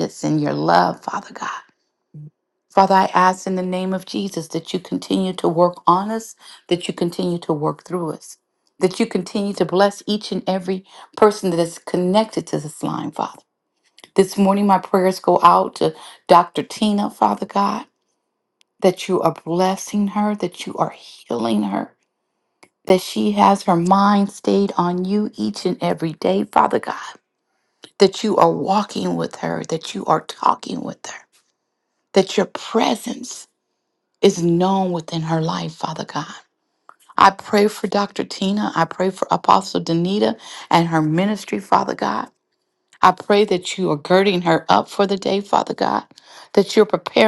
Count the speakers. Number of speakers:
one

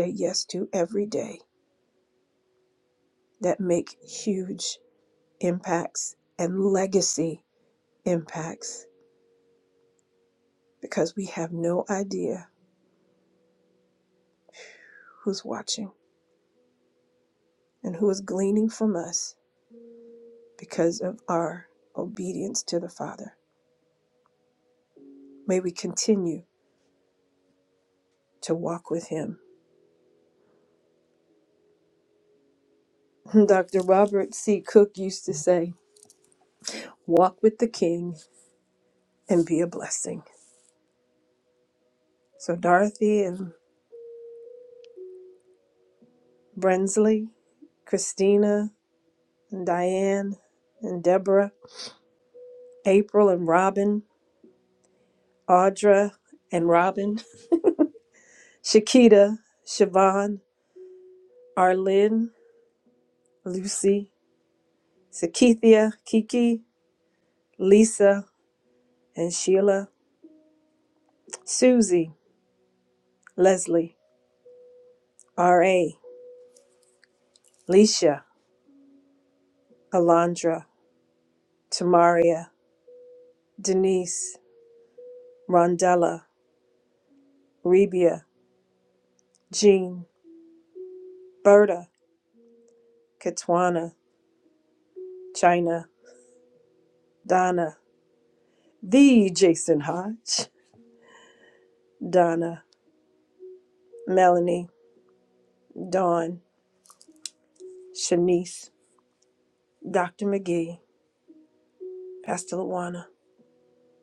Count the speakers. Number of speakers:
one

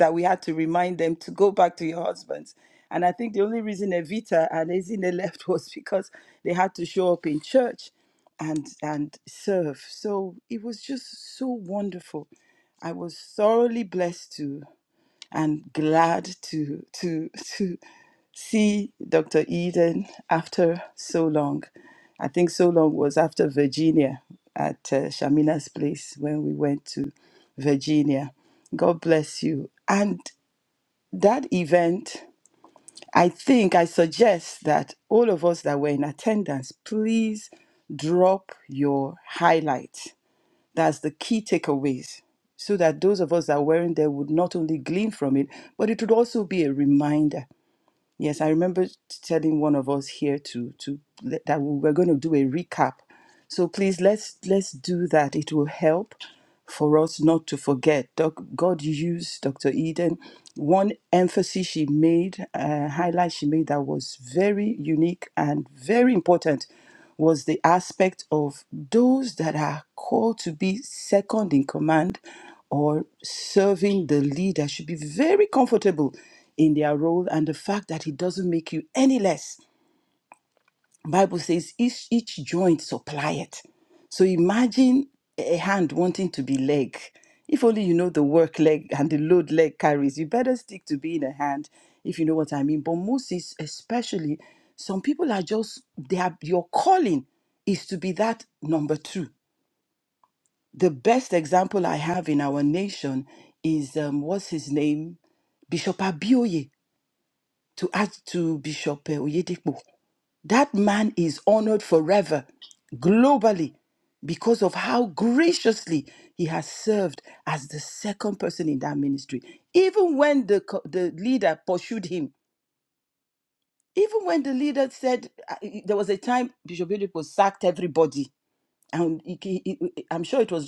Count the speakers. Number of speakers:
one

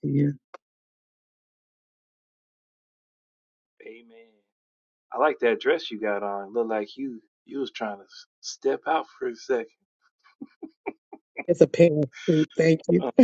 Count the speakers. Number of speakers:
two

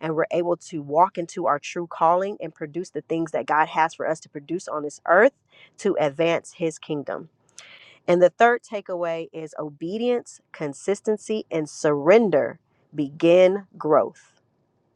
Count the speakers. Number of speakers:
one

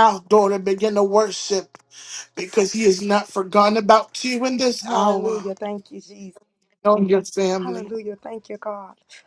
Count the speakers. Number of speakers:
two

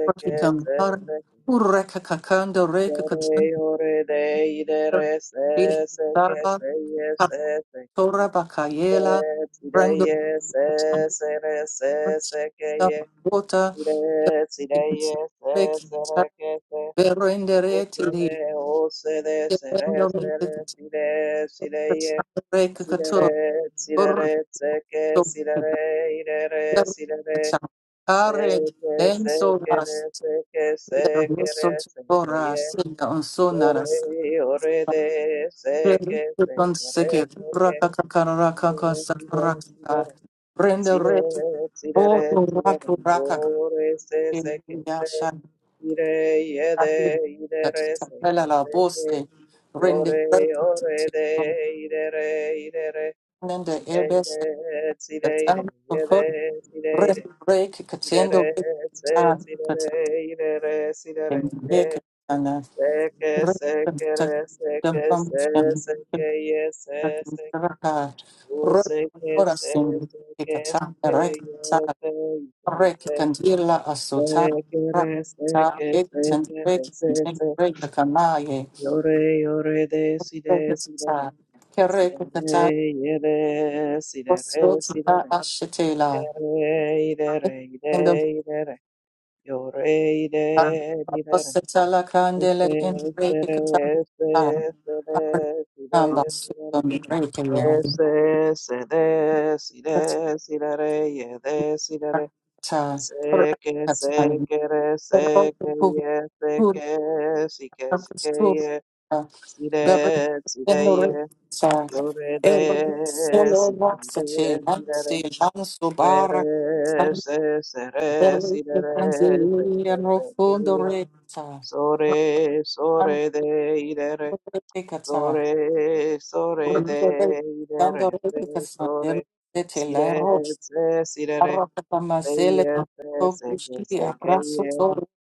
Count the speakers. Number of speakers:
two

